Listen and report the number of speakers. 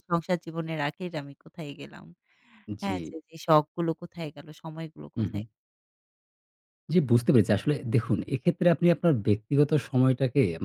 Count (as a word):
two